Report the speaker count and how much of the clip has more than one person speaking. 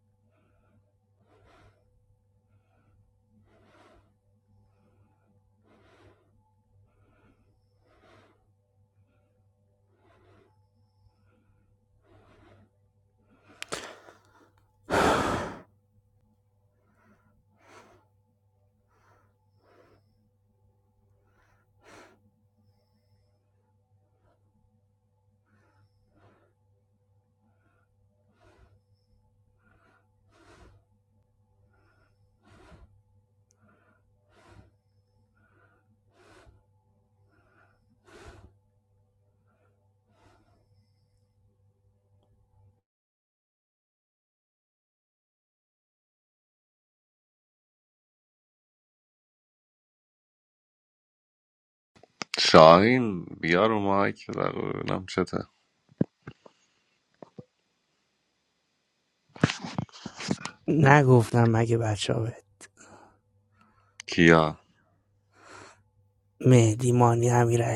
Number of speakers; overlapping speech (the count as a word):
two, no overlap